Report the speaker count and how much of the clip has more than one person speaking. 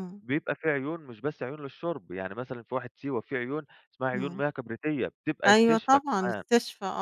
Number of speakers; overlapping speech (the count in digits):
2, about 18%